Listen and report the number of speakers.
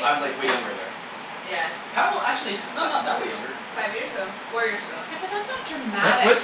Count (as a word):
three